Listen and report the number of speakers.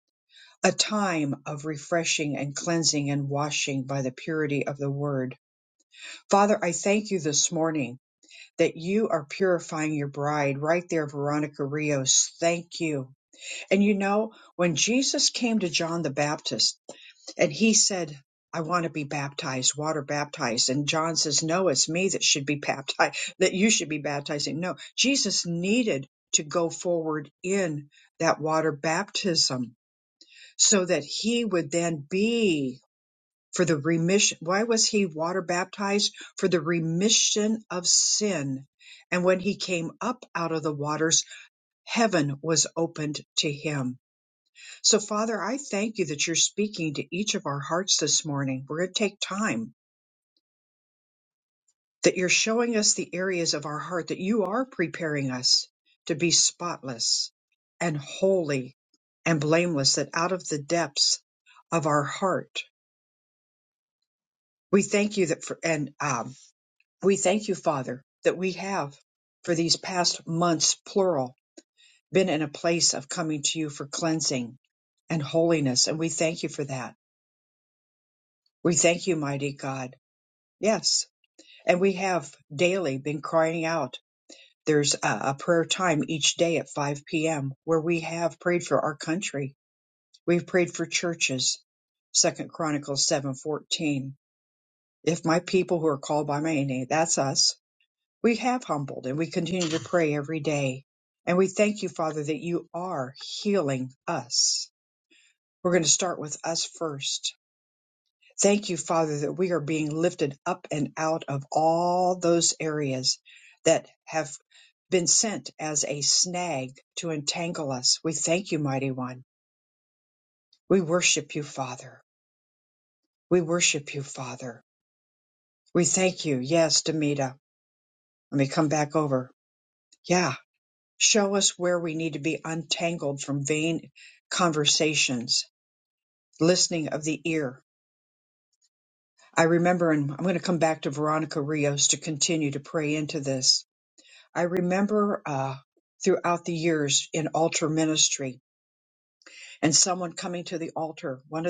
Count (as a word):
one